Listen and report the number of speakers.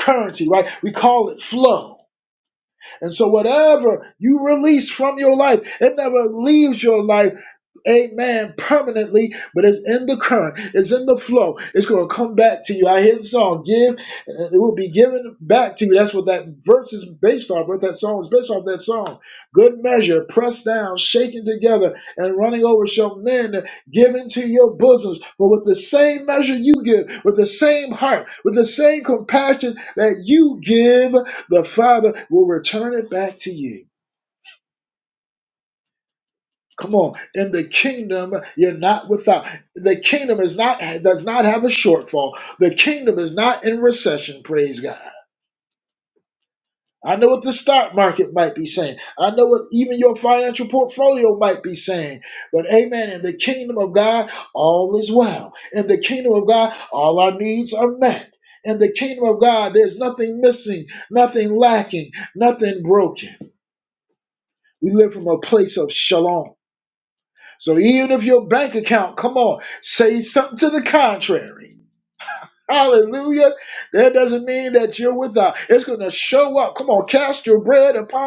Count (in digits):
1